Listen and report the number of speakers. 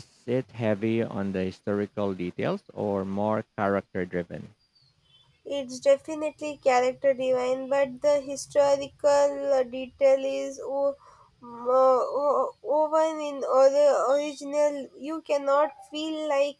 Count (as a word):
two